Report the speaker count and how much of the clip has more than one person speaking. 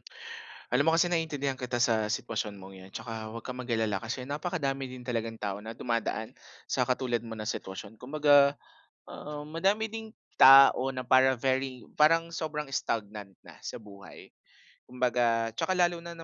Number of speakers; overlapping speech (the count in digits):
1, no overlap